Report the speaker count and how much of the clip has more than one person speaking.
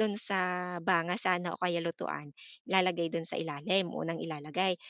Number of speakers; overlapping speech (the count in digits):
1, no overlap